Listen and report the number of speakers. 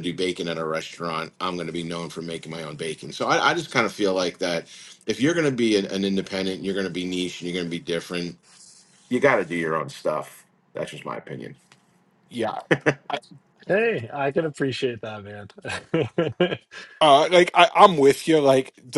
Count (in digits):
3